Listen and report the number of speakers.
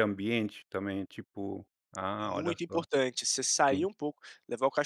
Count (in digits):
2